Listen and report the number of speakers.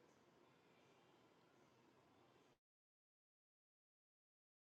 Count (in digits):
0